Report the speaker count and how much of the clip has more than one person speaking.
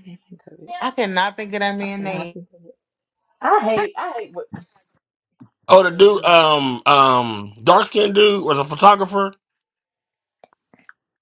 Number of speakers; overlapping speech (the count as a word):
three, about 7%